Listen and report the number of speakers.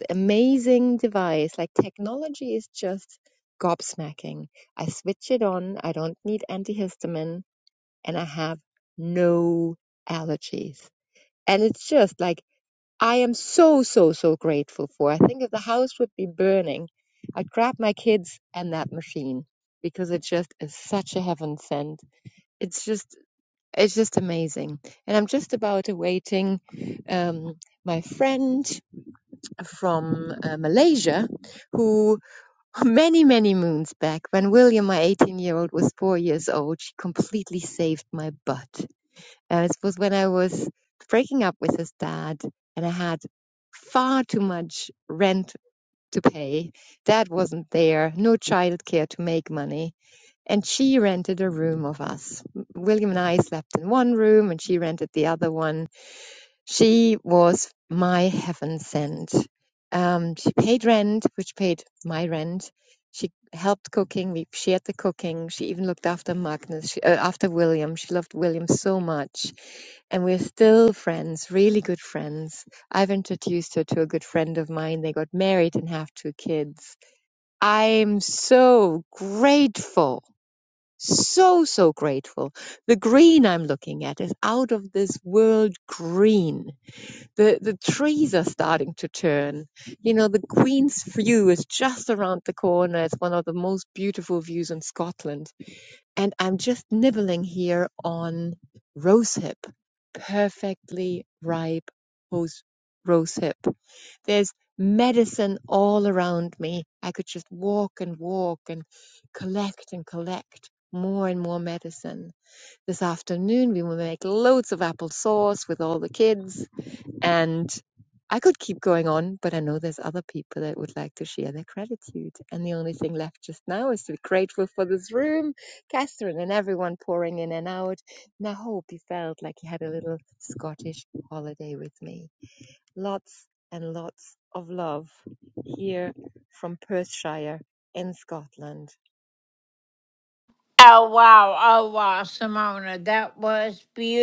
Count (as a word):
two